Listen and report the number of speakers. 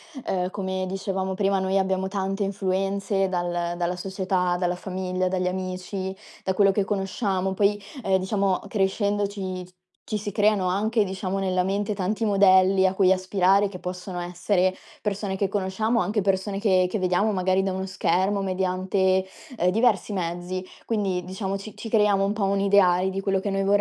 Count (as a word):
one